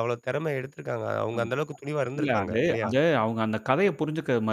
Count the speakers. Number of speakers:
two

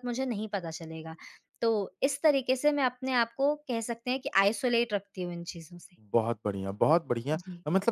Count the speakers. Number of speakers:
two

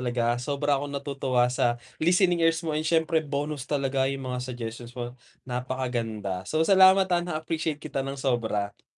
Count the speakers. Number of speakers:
one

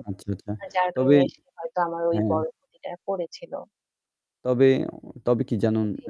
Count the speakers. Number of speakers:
two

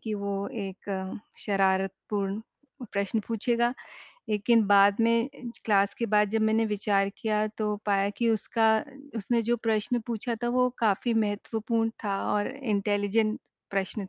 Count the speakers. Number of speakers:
one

